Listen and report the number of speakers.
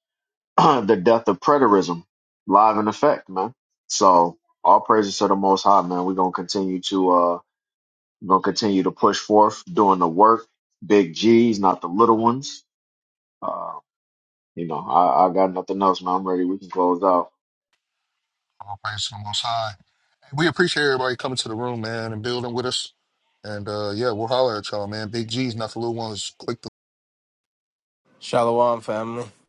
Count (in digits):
3